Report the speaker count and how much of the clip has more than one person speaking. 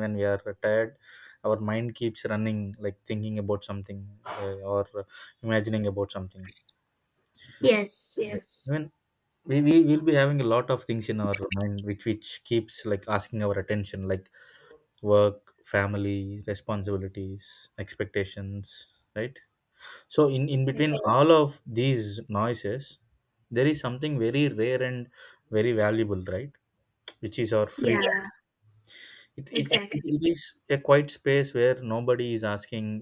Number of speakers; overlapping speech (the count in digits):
2, about 3%